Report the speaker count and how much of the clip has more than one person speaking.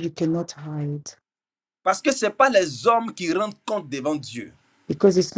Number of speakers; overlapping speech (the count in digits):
2, no overlap